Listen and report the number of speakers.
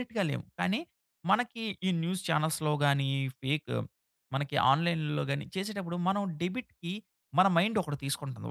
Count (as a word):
one